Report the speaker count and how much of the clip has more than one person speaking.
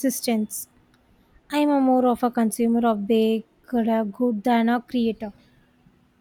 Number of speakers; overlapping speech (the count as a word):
one, no overlap